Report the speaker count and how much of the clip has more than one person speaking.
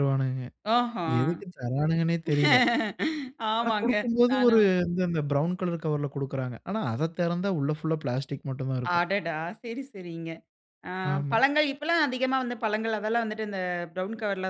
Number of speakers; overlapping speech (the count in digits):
2, about 8%